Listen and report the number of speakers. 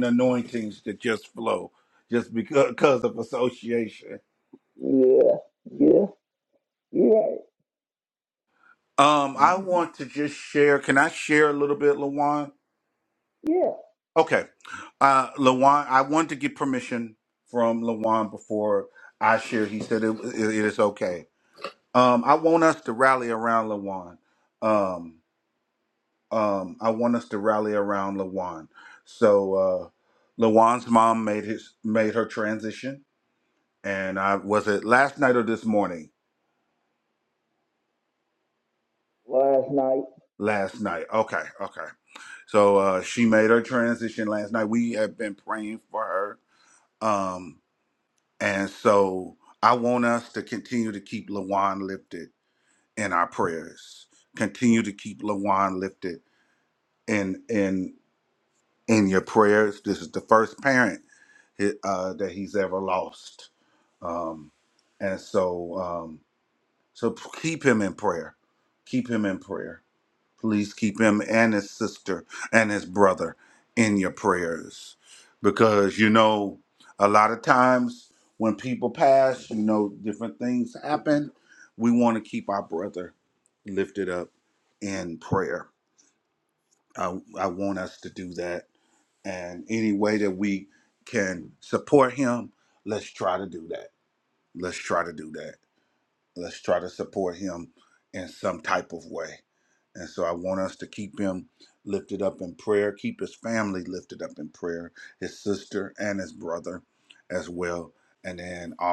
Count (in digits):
2